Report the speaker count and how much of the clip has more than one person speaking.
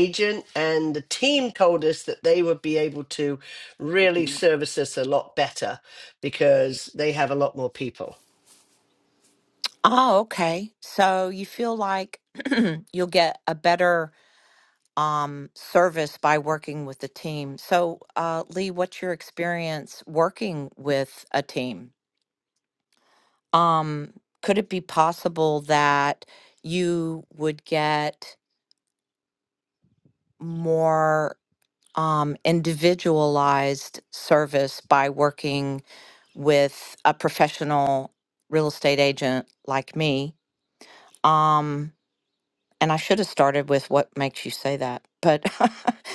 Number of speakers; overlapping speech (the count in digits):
2, no overlap